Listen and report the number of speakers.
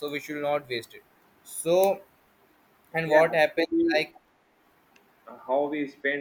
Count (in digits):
2